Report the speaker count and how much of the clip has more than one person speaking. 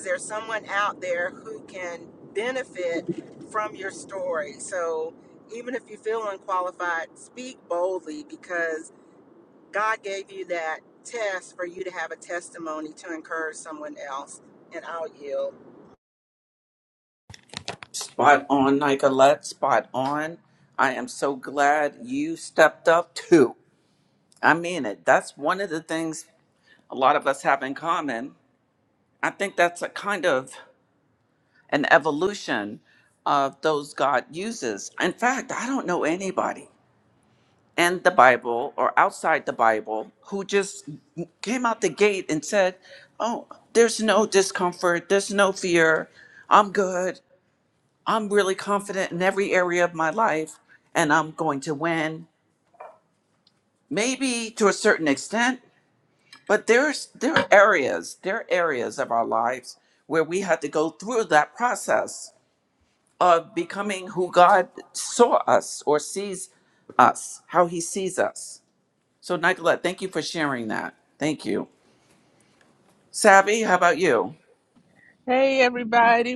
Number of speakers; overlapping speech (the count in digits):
3, no overlap